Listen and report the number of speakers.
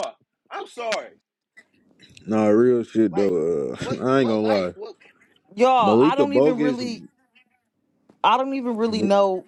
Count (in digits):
3